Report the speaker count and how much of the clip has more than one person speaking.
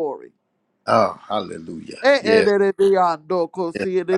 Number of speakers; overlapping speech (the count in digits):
2, about 14%